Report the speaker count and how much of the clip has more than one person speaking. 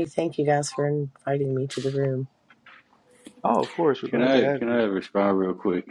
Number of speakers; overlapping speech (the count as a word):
three, about 12%